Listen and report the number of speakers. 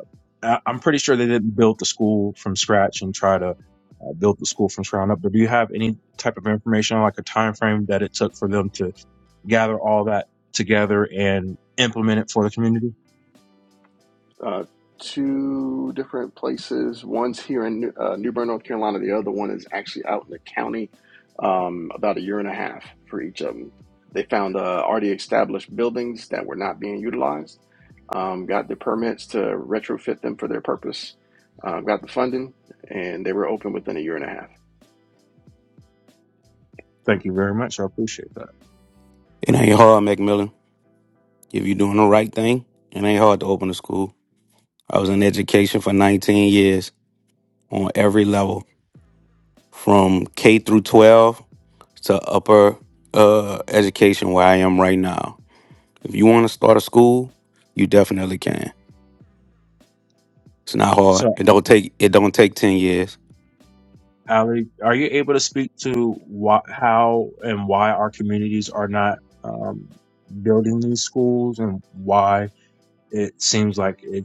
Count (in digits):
3